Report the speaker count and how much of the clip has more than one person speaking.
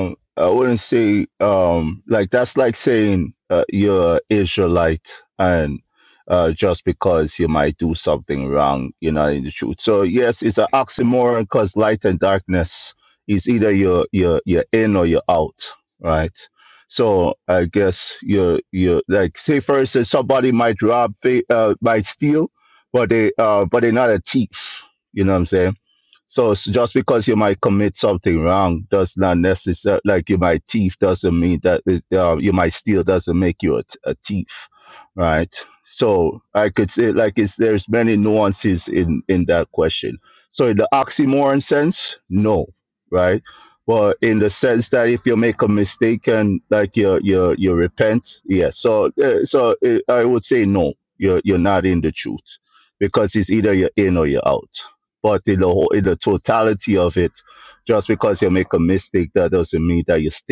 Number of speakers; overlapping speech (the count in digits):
1, no overlap